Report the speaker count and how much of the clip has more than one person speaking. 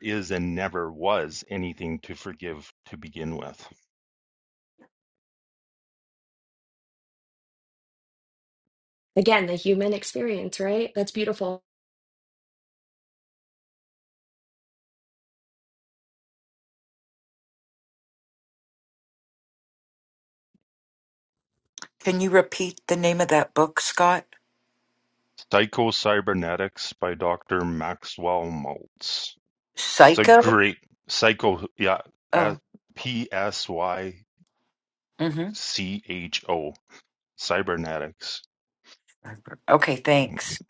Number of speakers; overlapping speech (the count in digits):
3, about 2%